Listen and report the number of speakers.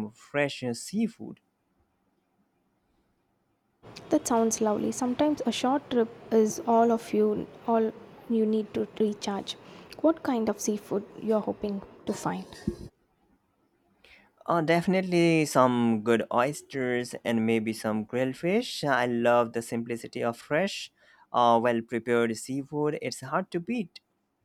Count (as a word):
two